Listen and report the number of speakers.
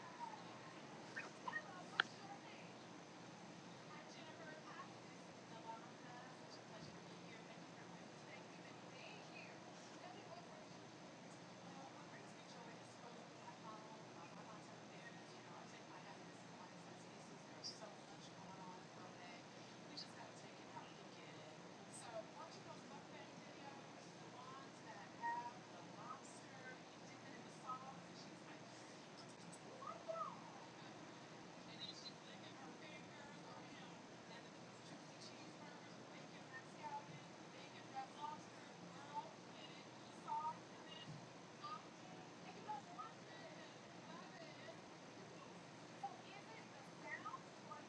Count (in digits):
0